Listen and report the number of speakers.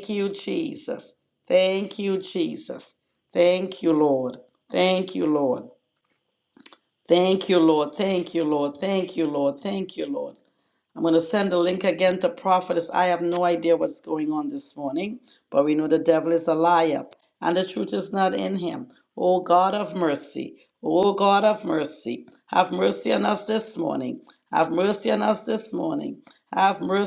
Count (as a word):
one